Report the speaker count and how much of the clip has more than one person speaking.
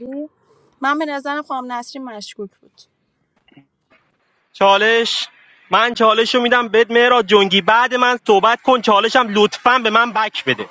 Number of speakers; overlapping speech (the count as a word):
two, no overlap